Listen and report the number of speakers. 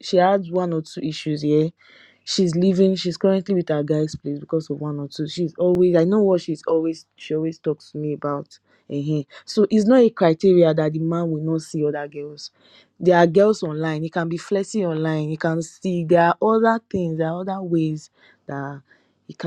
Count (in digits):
1